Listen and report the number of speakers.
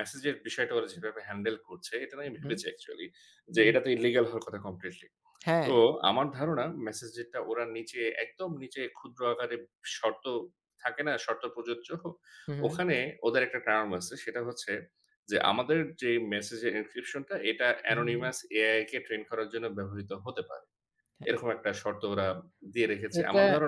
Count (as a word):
two